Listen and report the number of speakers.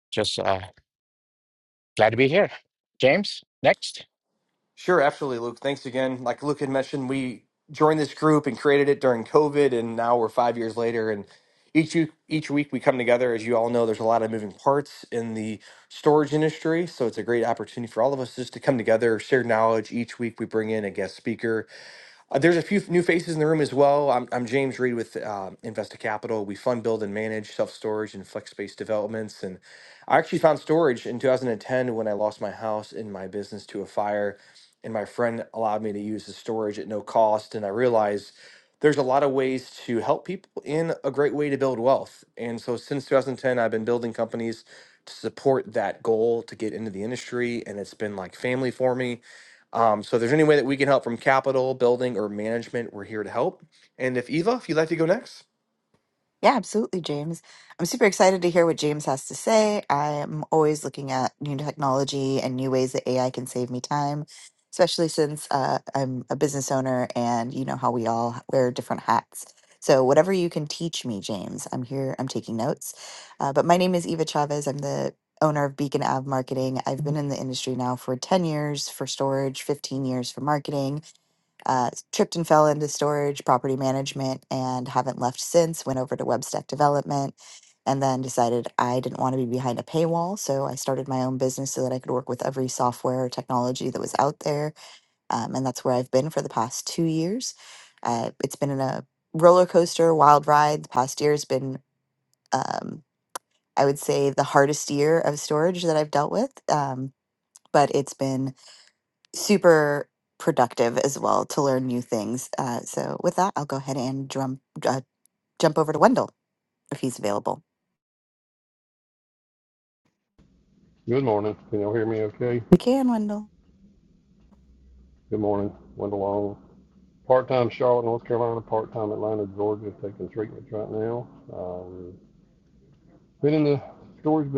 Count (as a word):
four